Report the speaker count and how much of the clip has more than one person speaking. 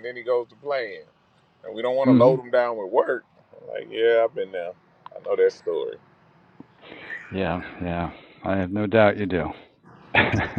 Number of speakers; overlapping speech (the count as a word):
two, about 3%